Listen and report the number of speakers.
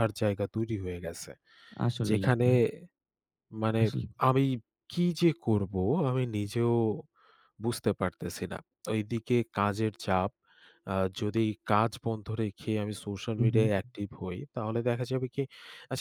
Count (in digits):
2